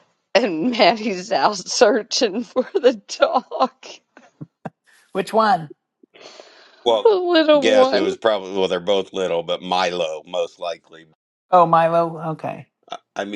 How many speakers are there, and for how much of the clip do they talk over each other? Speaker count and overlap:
3, about 5%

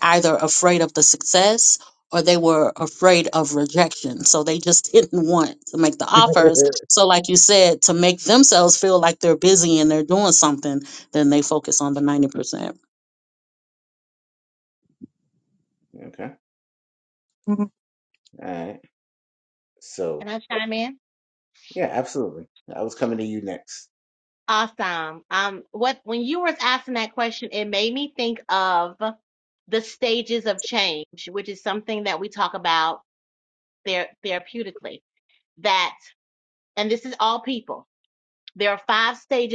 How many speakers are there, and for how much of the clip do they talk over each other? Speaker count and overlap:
3, about 2%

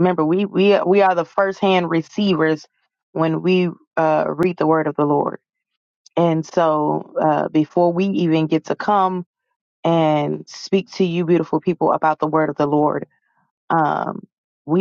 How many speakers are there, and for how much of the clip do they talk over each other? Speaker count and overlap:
1, no overlap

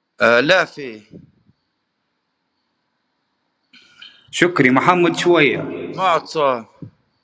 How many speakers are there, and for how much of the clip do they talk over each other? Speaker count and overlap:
2, about 2%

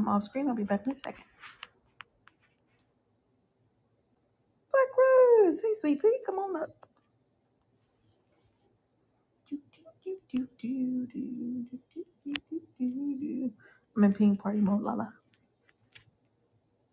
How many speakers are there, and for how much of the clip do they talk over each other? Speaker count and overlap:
1, no overlap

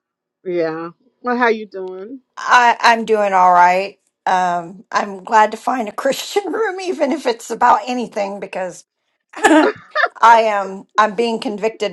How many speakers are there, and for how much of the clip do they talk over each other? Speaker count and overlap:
2, no overlap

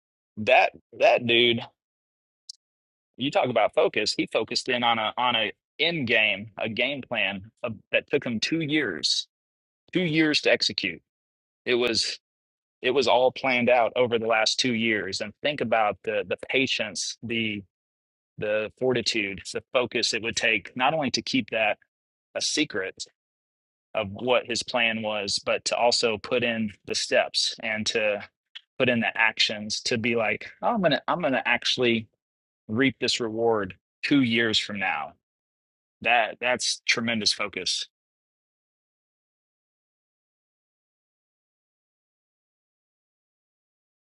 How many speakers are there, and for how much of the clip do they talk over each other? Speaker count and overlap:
1, no overlap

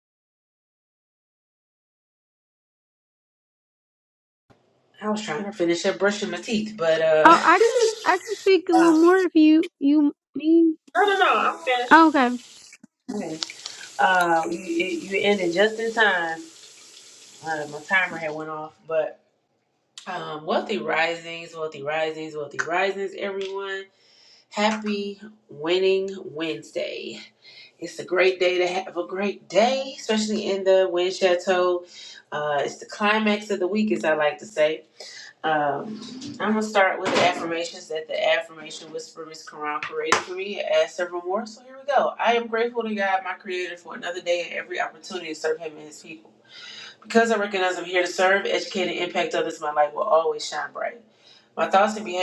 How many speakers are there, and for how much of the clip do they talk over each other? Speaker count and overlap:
2, about 1%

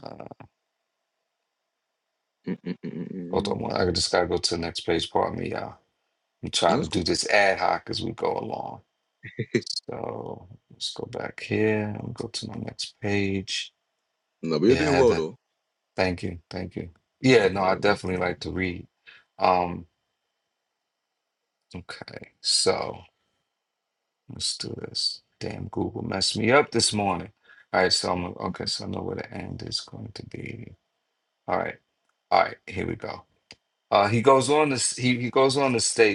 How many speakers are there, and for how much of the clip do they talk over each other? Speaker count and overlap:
2, about 3%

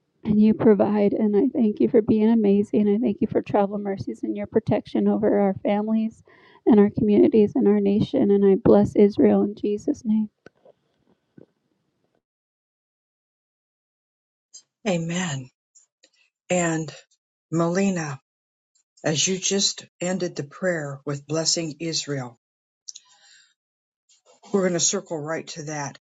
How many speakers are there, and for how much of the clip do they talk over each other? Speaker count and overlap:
2, no overlap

